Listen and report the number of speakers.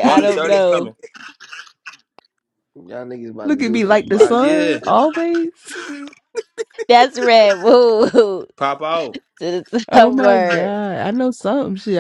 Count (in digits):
4